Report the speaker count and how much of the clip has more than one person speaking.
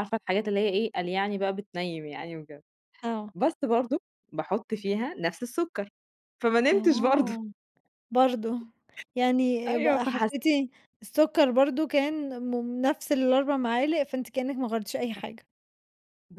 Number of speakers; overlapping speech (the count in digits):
2, about 8%